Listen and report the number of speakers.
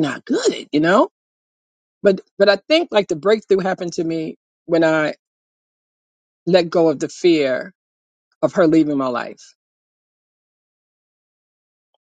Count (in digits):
1